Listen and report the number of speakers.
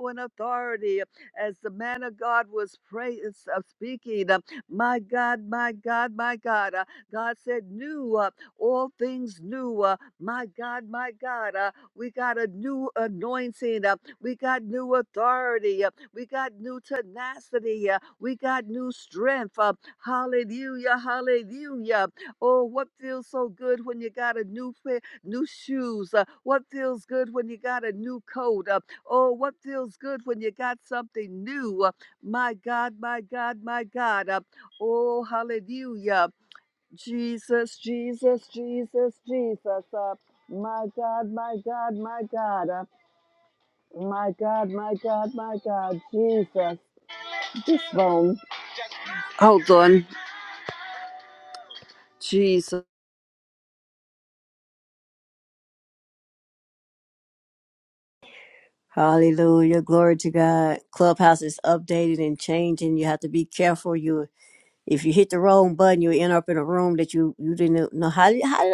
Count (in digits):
2